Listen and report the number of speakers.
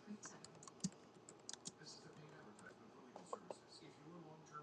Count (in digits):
0